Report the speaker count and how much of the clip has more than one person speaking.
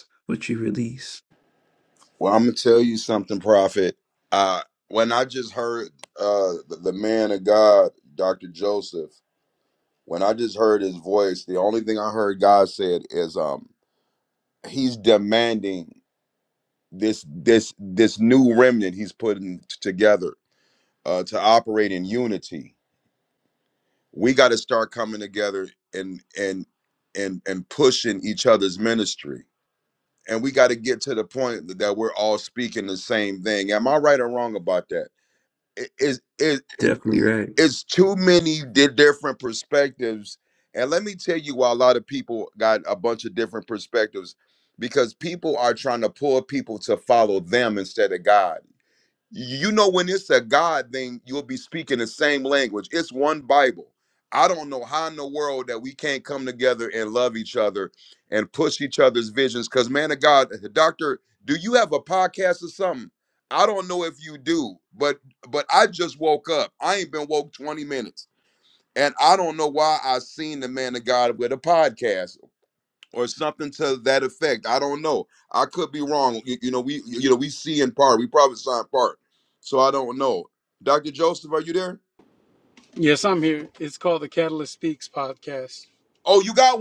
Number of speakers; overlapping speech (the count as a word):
three, under 1%